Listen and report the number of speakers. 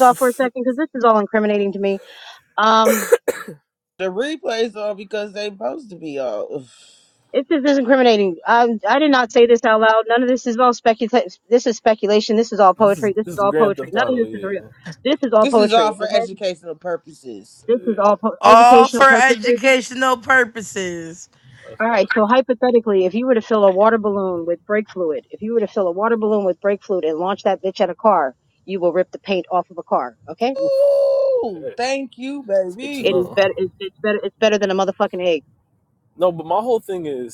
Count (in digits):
4